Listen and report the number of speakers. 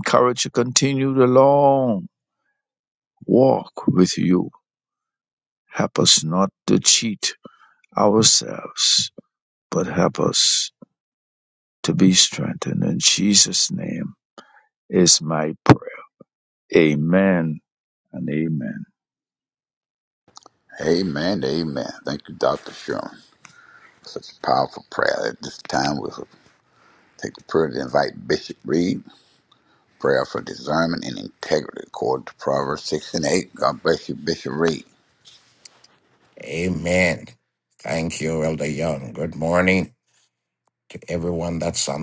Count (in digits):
3